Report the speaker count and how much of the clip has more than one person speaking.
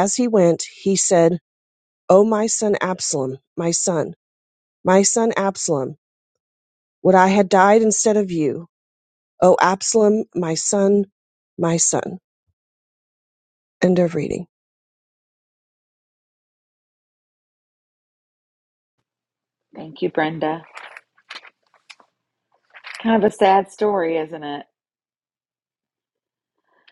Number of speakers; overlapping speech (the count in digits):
2, no overlap